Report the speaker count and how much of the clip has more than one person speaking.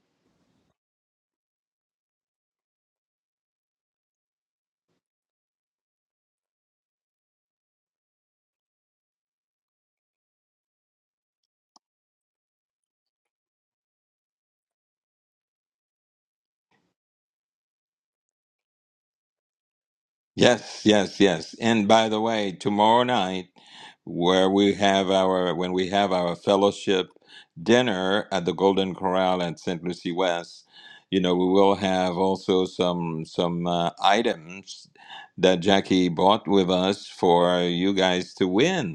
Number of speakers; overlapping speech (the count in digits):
1, no overlap